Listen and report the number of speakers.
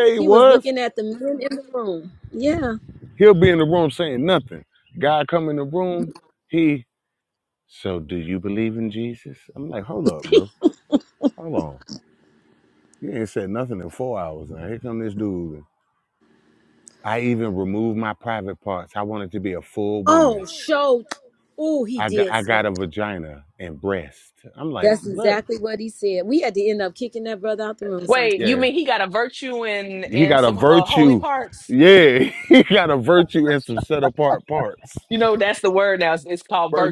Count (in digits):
3